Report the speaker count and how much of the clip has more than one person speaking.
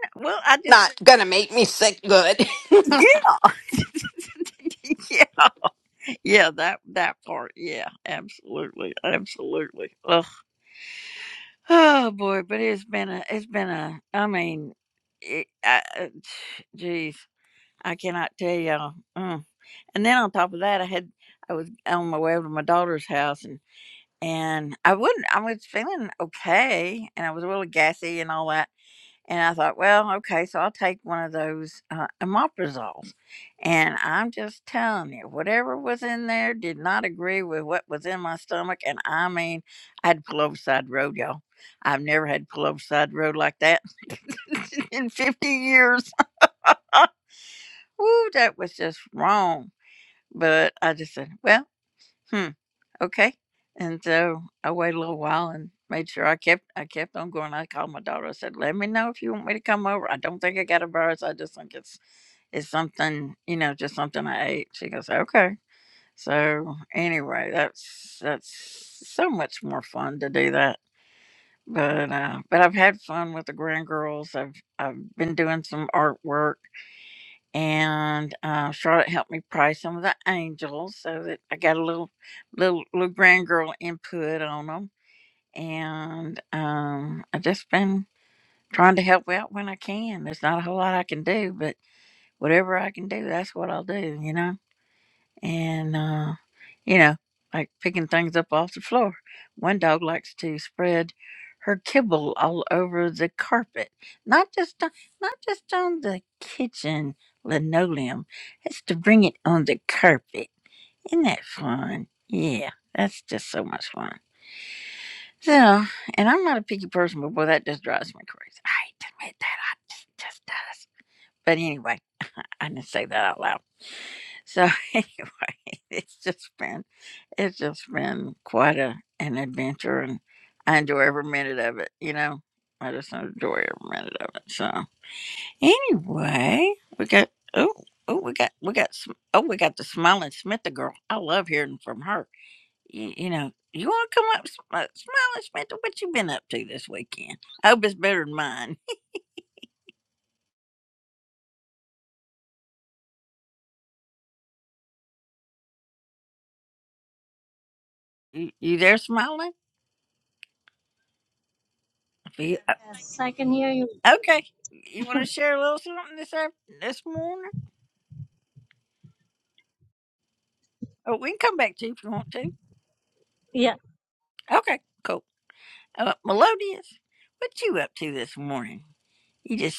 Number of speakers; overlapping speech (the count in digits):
3, under 1%